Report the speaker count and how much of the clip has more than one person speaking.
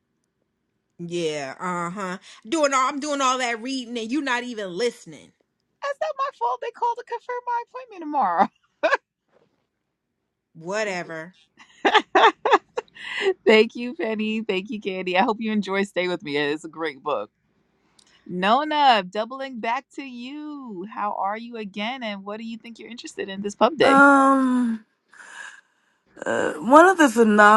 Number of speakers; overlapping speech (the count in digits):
3, about 1%